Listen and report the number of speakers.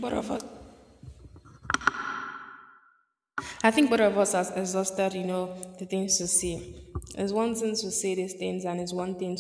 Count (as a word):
one